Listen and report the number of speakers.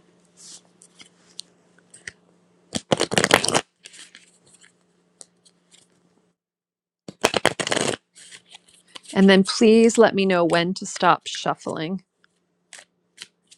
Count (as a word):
one